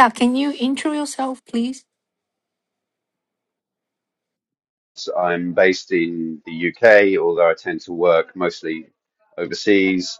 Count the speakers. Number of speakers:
2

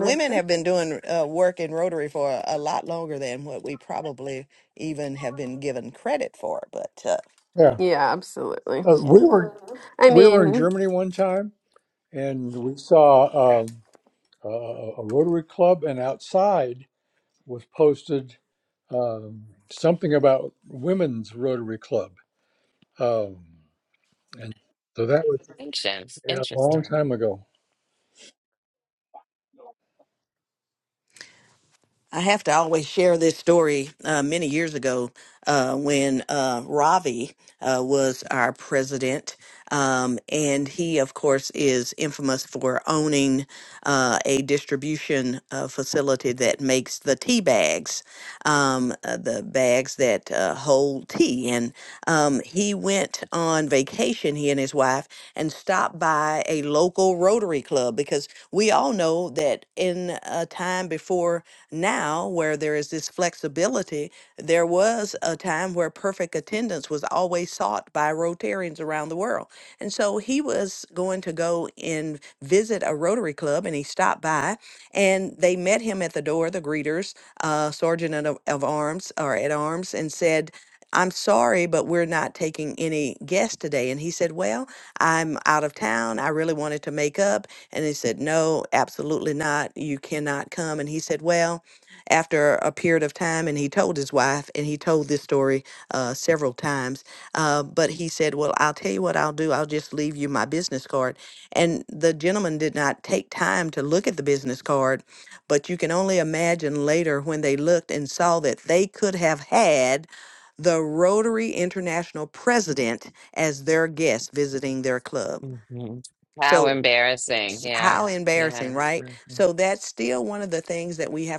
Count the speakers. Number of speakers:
4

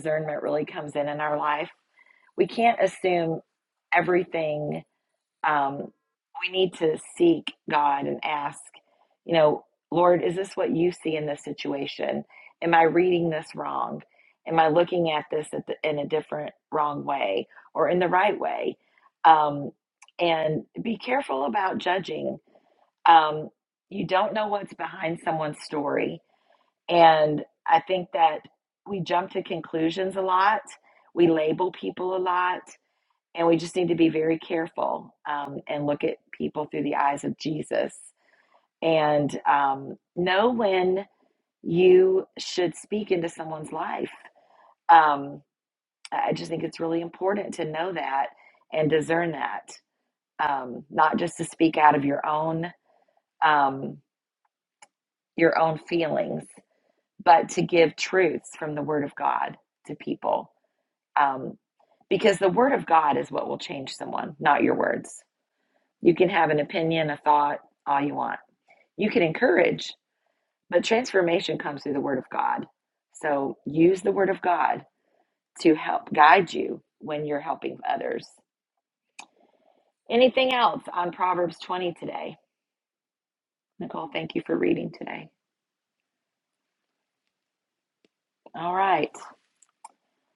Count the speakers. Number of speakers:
1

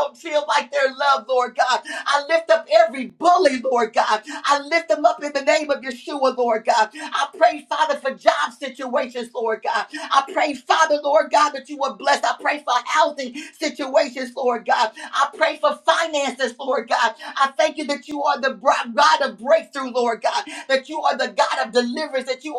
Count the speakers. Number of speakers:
1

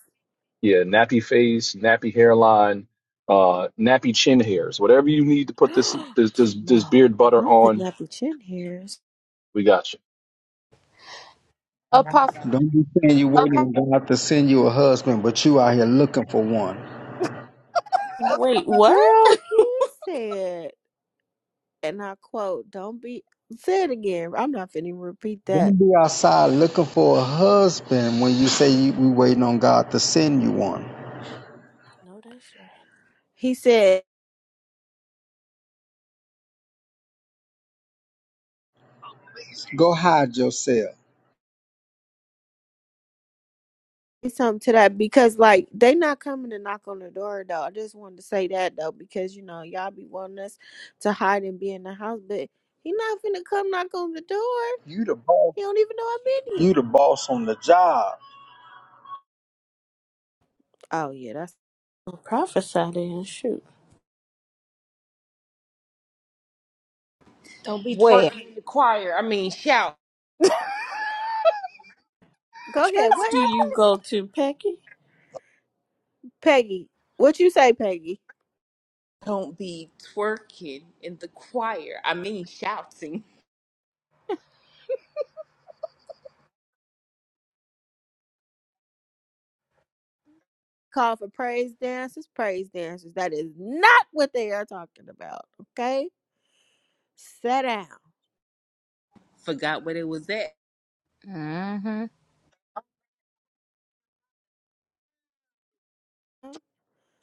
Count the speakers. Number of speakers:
6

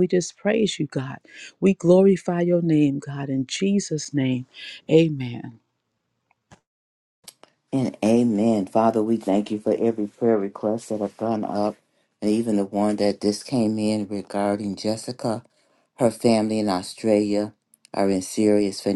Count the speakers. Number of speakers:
2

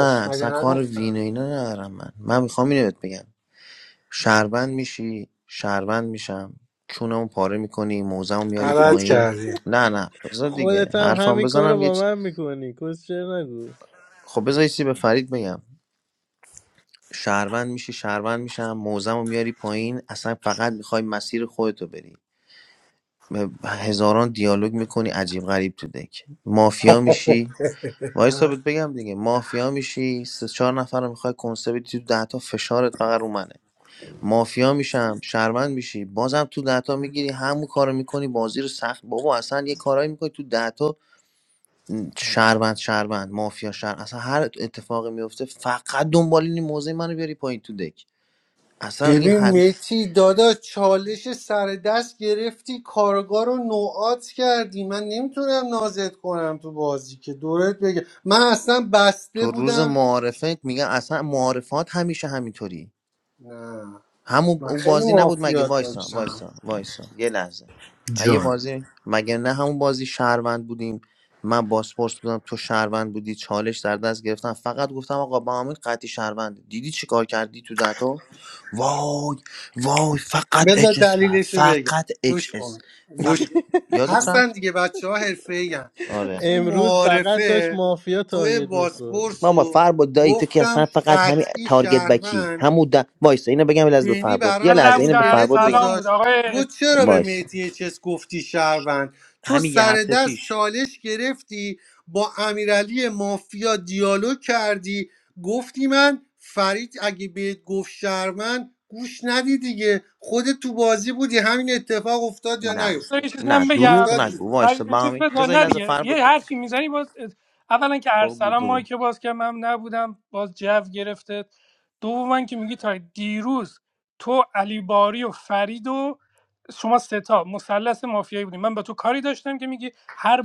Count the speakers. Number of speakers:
4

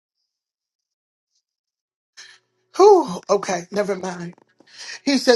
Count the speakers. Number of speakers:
1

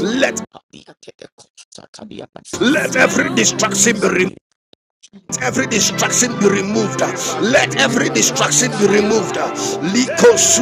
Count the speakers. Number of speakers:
2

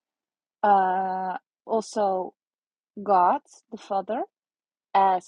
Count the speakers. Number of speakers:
1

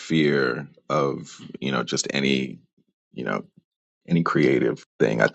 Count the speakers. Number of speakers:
1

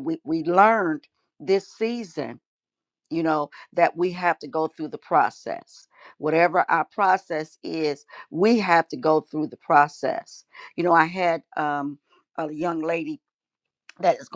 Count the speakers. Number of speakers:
1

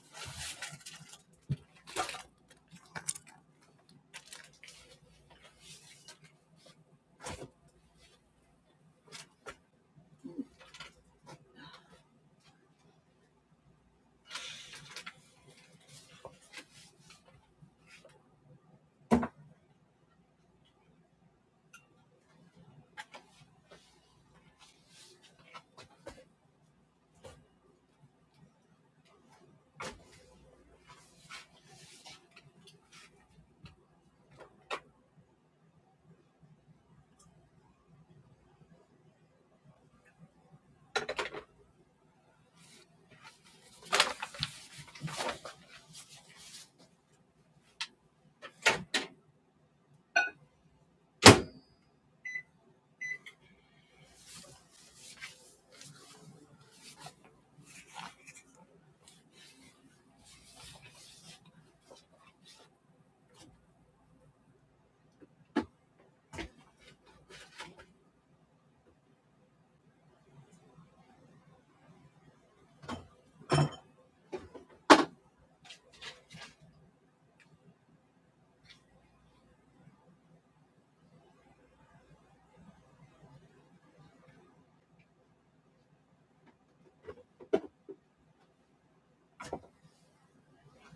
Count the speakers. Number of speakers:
0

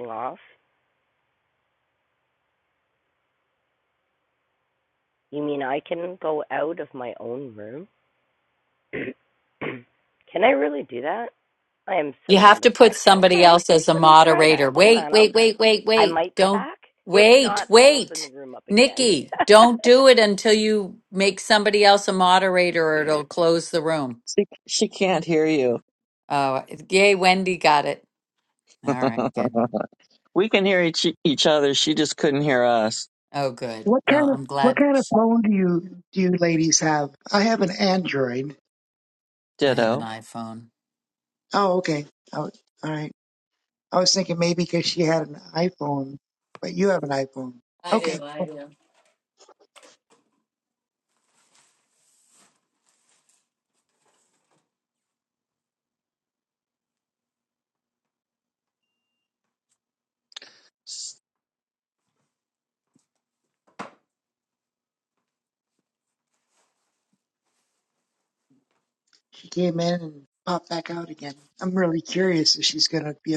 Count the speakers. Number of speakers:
4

